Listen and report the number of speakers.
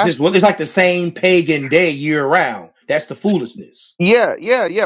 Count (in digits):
2